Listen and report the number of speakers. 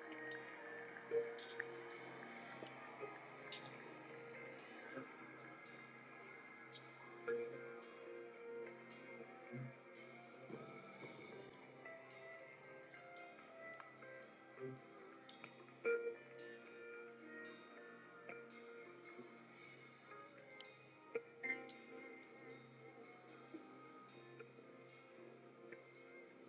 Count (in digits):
0